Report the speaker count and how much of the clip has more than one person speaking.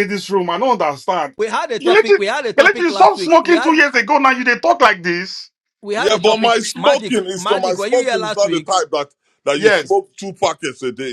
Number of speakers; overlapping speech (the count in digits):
3, about 42%